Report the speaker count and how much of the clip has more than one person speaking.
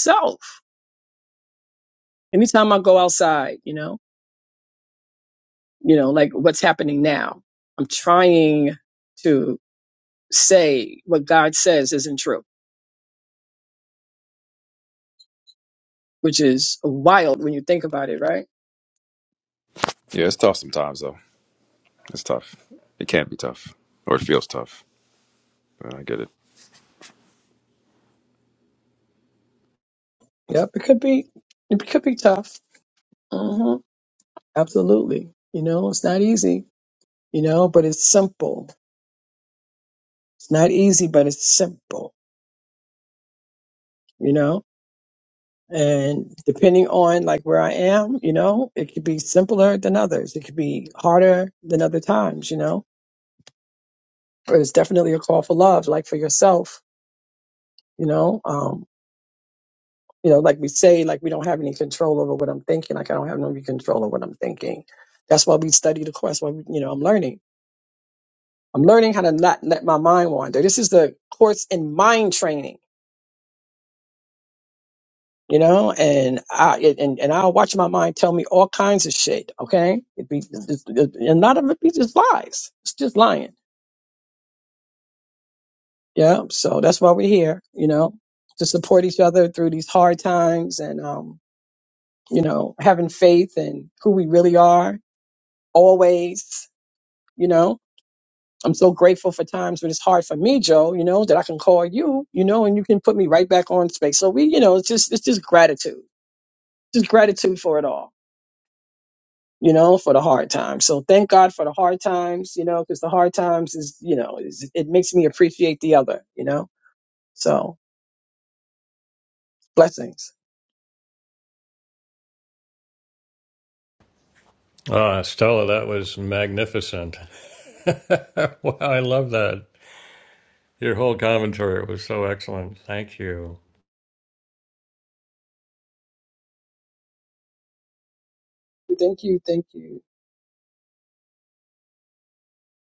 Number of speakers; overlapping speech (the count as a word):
three, no overlap